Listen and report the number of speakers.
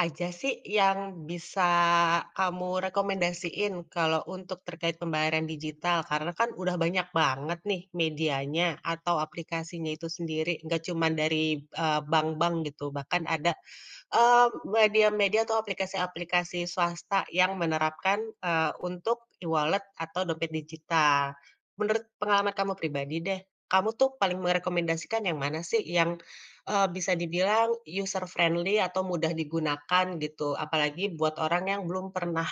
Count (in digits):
1